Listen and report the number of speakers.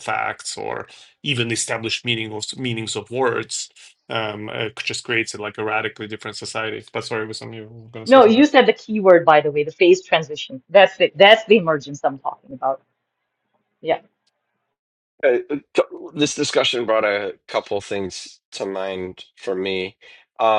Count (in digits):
3